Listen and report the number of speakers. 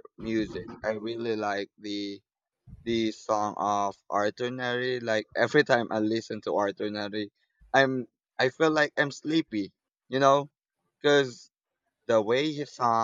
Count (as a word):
one